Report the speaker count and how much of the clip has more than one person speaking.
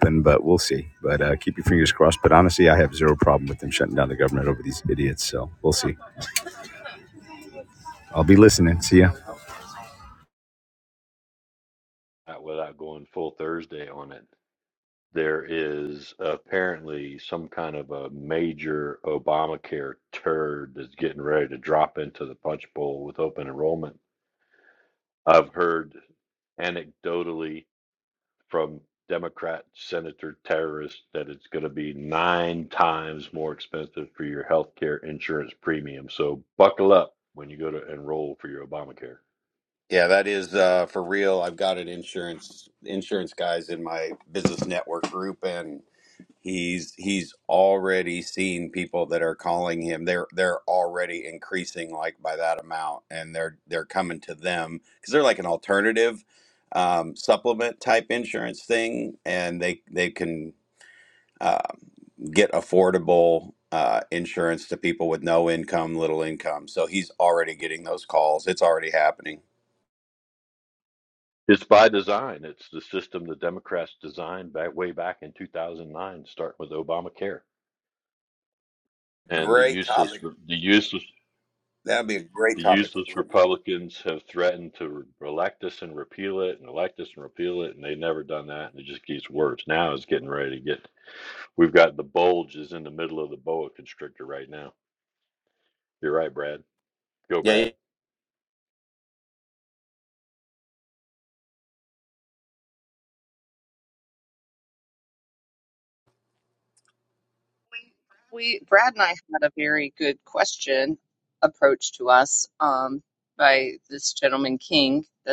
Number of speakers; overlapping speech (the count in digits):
4, about 1%